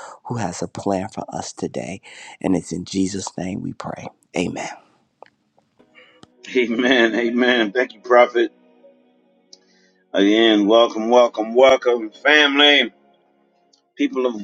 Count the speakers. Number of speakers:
2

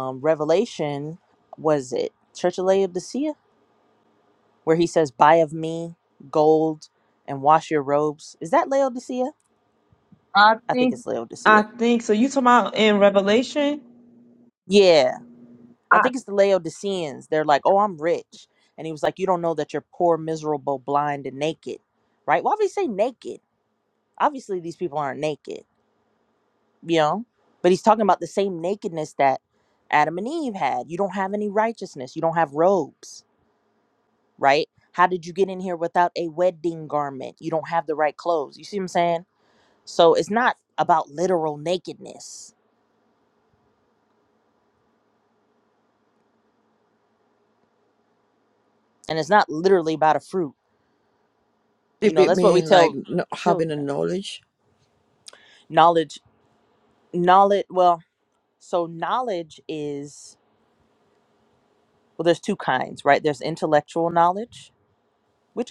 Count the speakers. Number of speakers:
3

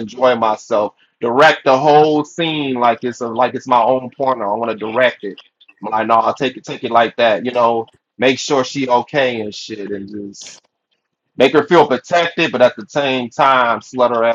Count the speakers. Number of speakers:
1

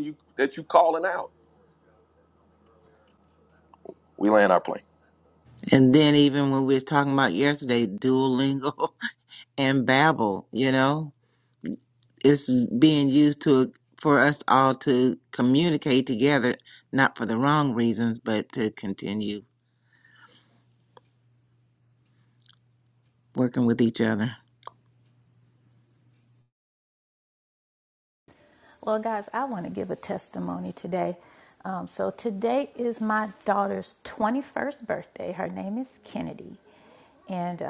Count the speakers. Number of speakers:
3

